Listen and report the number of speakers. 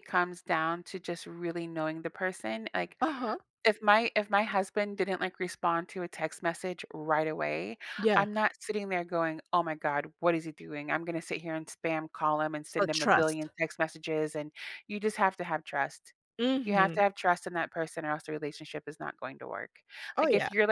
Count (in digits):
2